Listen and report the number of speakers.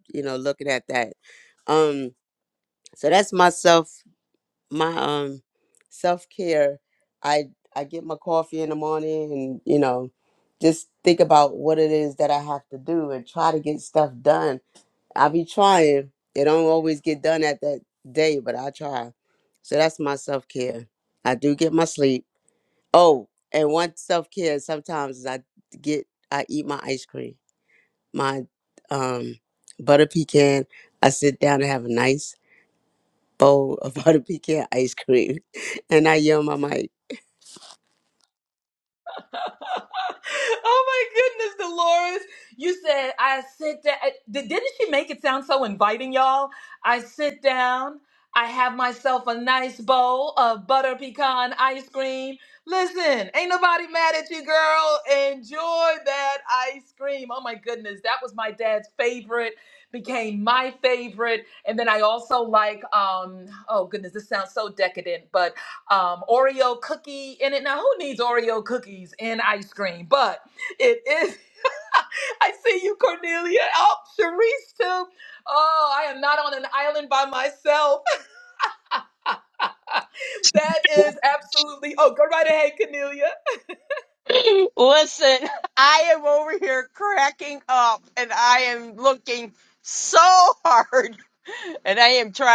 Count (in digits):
3